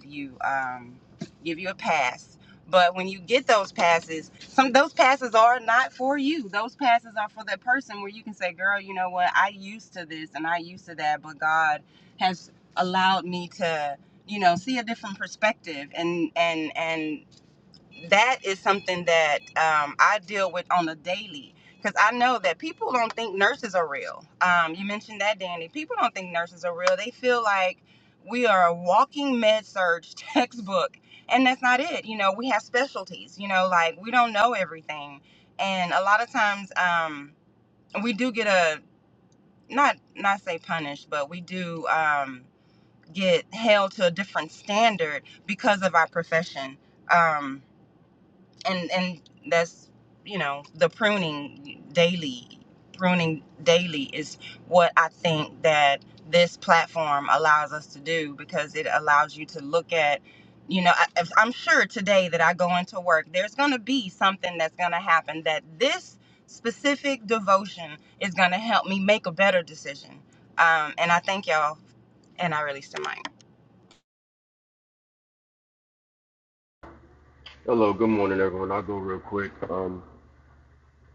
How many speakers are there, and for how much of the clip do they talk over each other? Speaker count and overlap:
two, no overlap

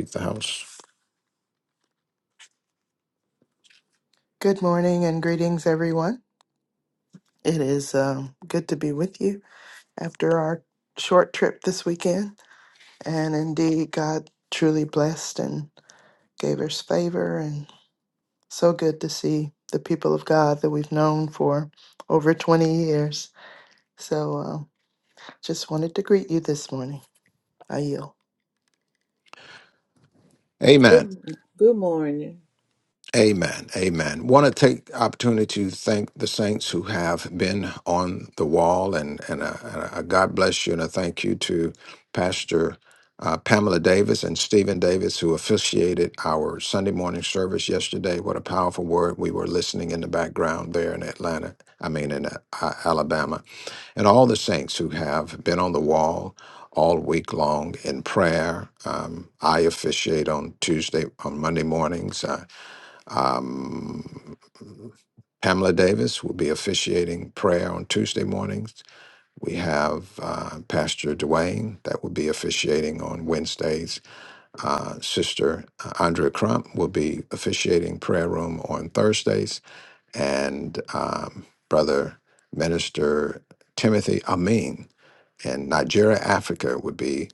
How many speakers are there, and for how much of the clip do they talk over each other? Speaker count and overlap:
three, under 1%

